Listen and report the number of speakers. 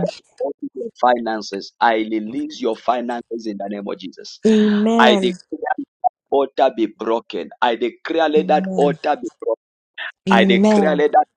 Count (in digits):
2